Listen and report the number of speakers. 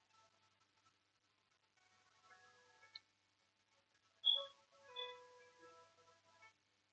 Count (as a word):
zero